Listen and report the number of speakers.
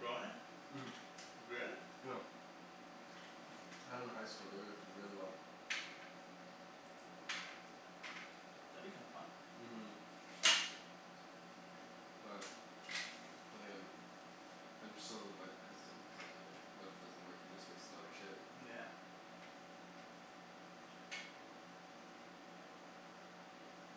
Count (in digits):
2